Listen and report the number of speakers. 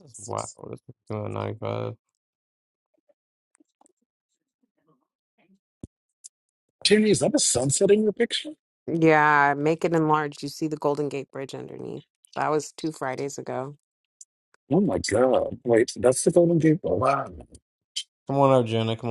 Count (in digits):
3